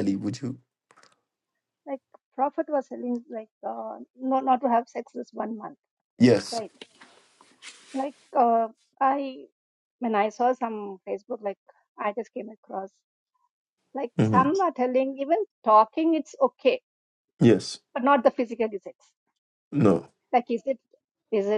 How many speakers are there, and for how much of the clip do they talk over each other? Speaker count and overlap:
2, about 2%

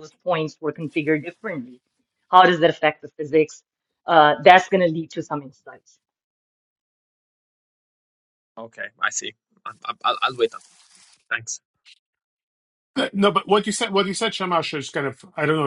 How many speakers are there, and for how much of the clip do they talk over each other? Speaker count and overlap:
3, no overlap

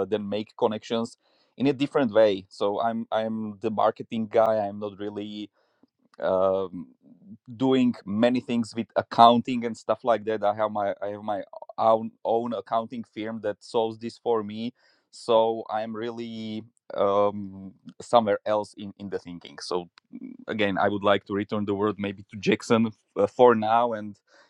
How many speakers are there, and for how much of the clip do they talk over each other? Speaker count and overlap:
1, no overlap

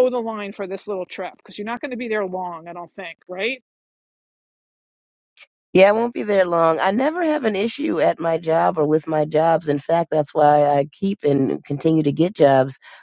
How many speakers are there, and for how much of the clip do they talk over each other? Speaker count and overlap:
2, no overlap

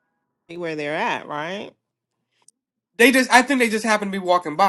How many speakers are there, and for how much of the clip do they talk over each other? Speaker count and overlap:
2, no overlap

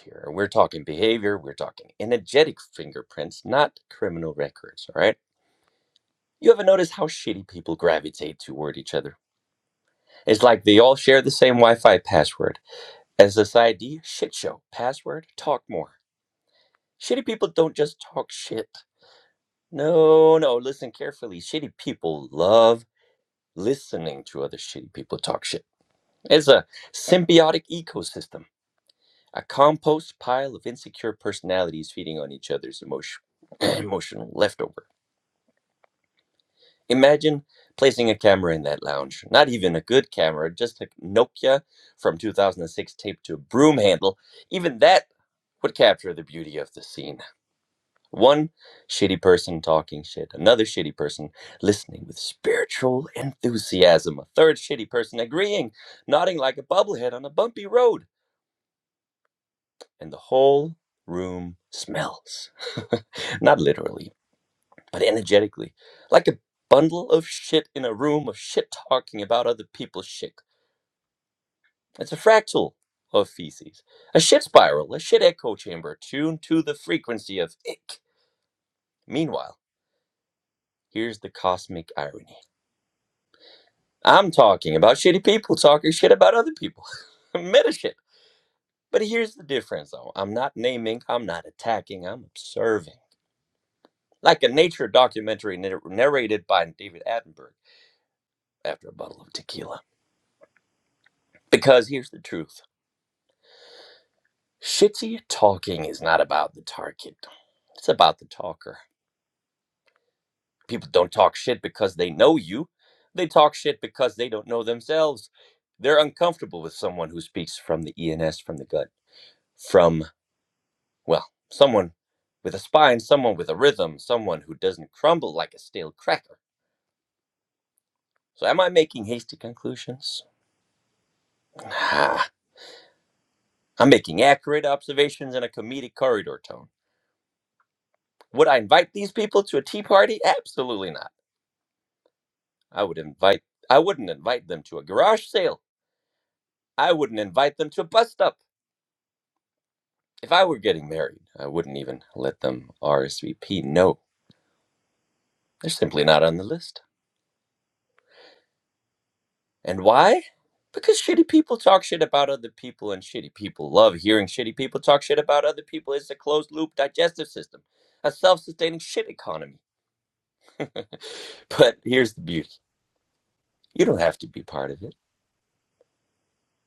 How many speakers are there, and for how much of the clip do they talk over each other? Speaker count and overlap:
1, no overlap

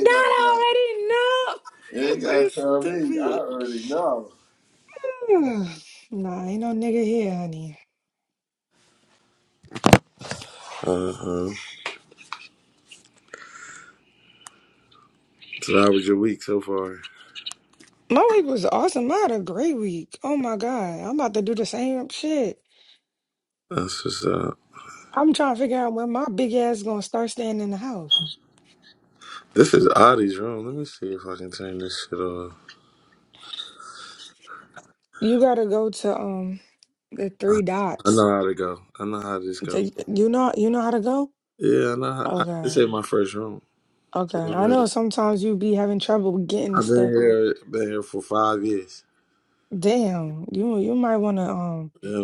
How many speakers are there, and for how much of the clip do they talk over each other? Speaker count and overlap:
2, about 8%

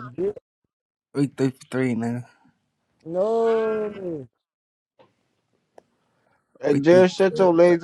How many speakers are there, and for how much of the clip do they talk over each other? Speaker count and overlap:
3, about 11%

